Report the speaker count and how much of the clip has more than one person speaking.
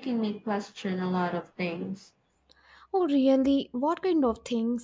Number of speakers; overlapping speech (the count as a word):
two, no overlap